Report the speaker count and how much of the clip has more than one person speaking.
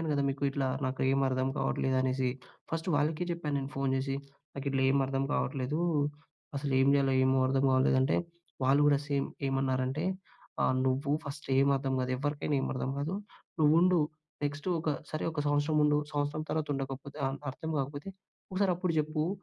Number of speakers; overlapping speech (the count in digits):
1, no overlap